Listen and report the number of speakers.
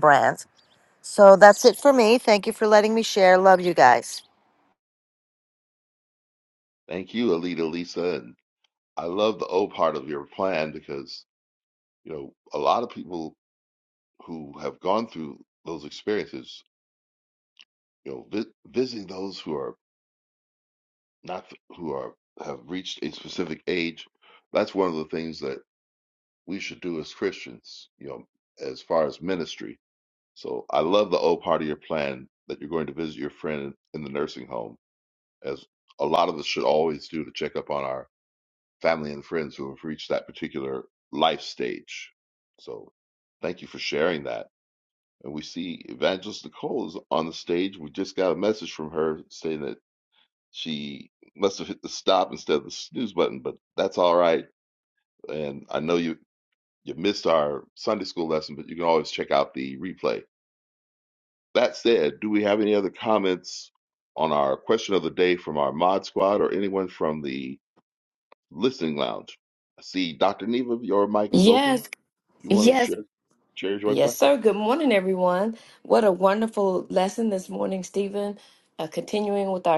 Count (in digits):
3